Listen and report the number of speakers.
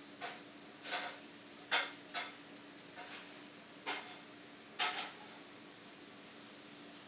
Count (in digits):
0